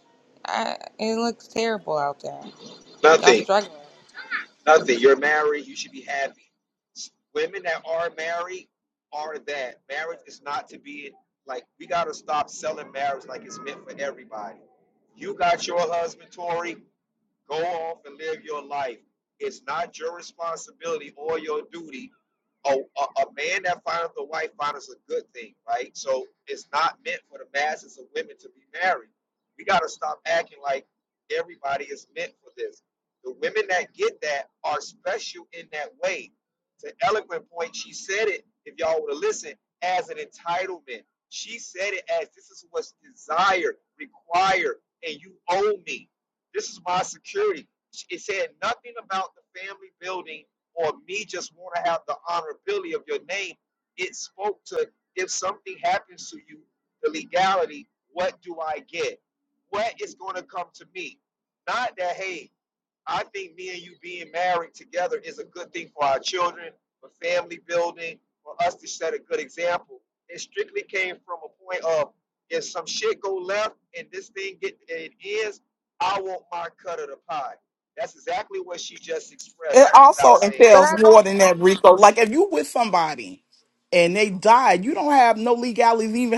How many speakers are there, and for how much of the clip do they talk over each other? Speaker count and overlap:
three, about 1%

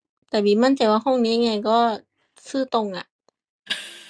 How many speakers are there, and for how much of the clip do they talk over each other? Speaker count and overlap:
one, no overlap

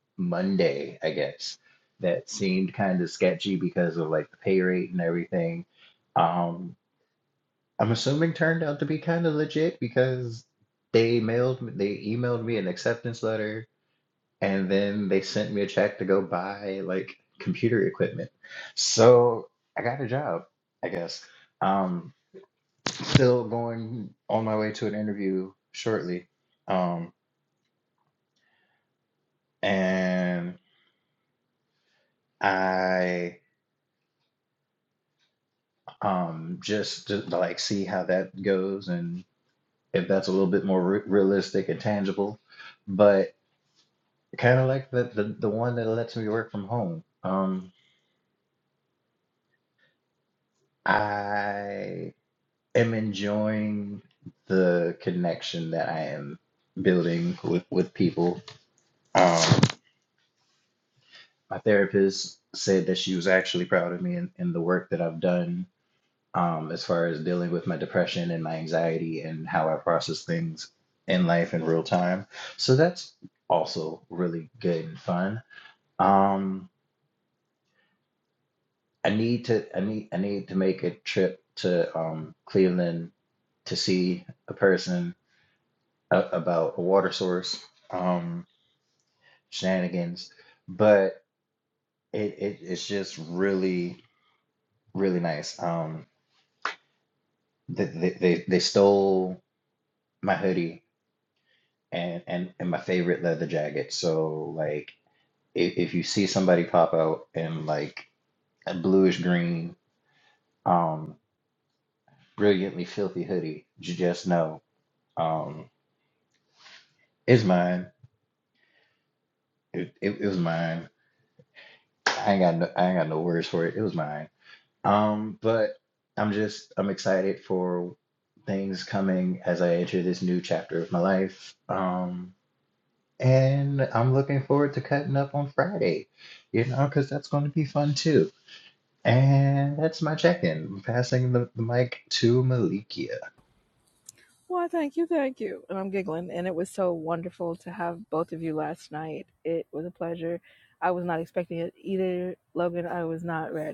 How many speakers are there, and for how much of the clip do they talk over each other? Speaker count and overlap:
two, no overlap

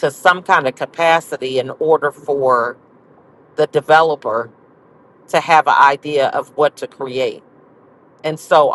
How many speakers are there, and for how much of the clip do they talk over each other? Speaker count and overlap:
one, no overlap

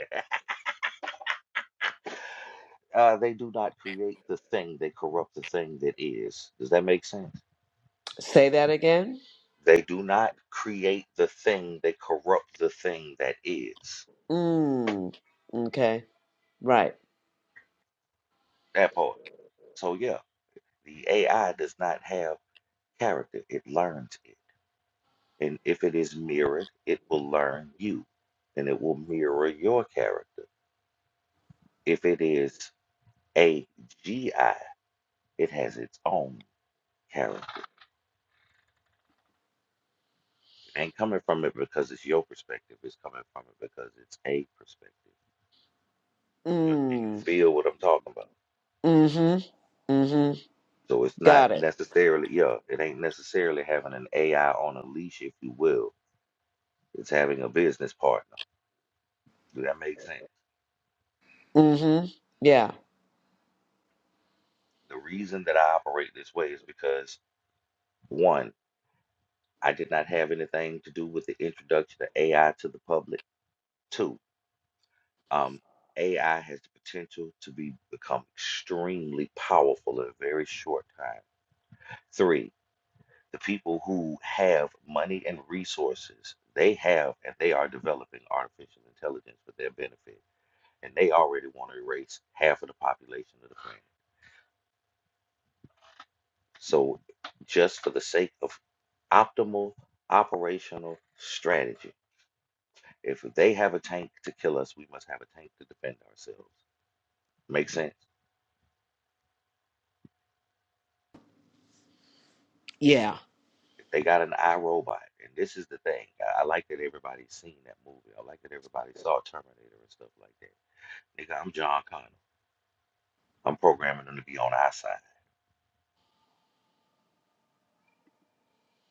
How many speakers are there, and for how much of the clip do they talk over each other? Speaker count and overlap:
two, about 1%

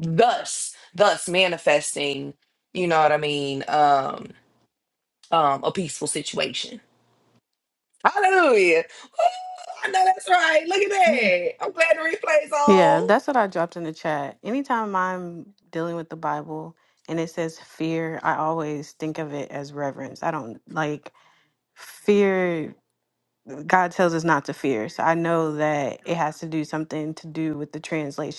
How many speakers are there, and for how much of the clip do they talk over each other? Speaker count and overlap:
two, about 2%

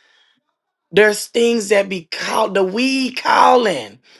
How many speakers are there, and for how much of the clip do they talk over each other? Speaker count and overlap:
one, no overlap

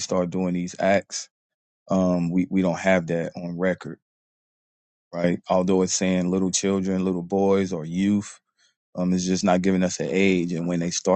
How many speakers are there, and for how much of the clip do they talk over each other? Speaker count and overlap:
one, no overlap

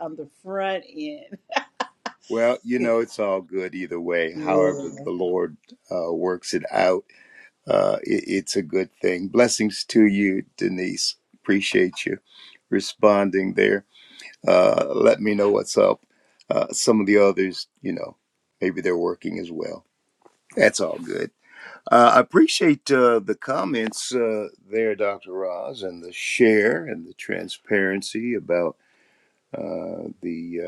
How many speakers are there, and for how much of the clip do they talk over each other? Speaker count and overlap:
two, about 2%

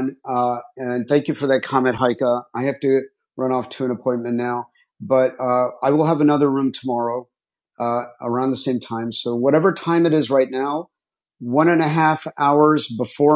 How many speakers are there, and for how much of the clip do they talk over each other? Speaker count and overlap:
one, no overlap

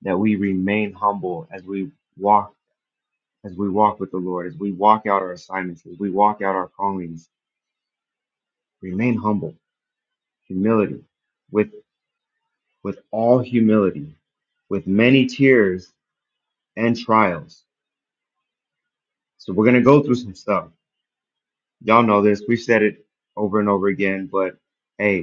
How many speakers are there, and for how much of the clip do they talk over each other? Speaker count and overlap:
one, no overlap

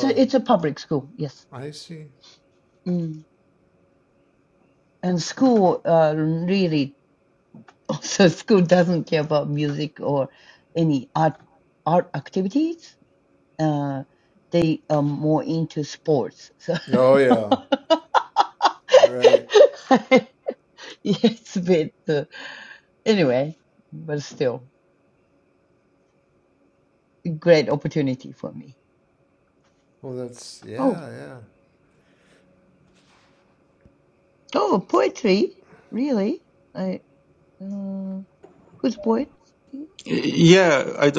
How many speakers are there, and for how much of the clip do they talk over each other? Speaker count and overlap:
three, about 1%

